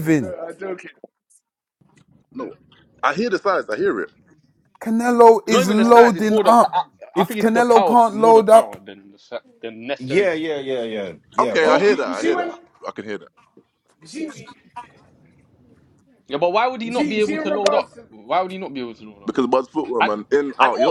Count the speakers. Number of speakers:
5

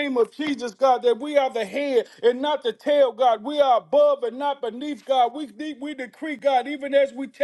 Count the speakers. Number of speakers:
1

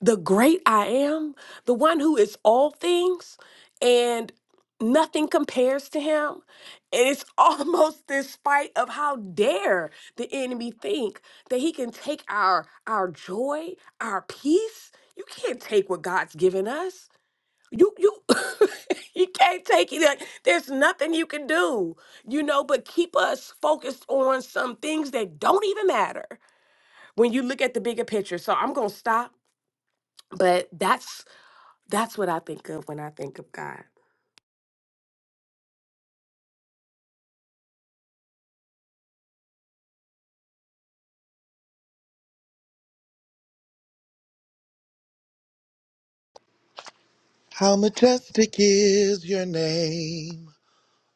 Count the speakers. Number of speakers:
2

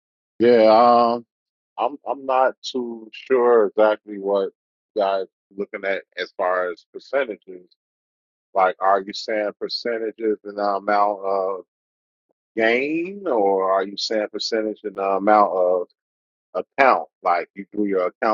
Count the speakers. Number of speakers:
1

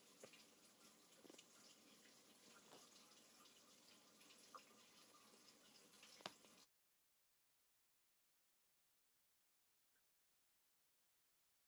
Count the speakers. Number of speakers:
0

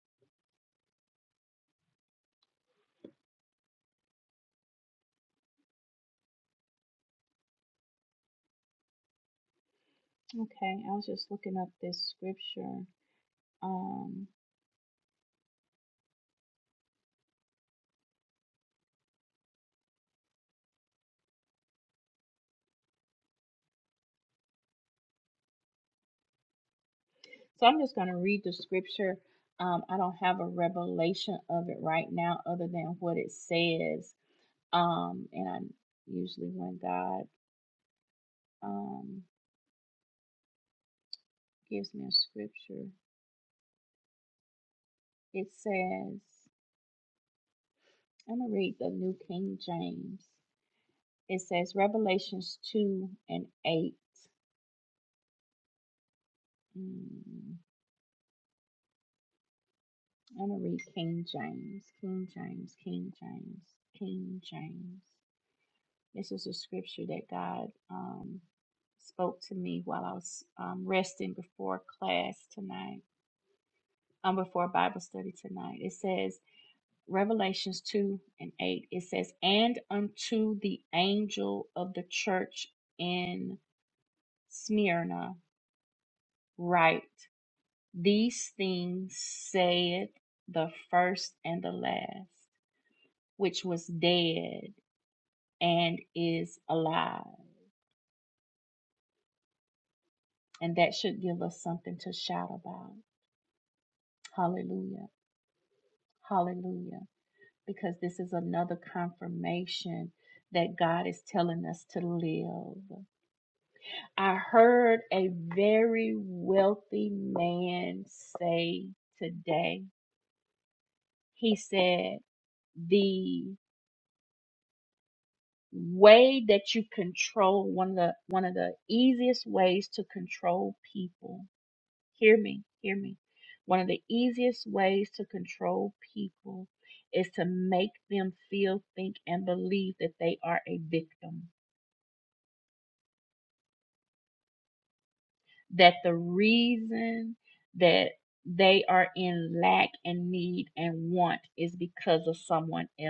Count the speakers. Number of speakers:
1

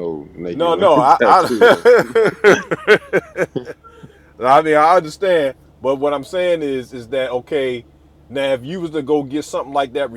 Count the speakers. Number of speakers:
2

